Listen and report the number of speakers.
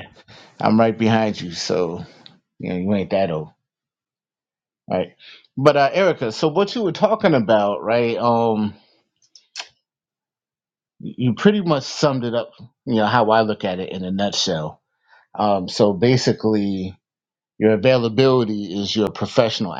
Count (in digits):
1